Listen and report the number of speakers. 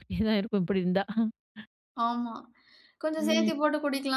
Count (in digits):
2